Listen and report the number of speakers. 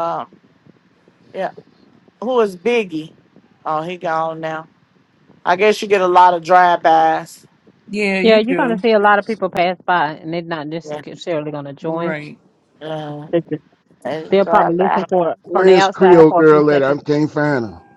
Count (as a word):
four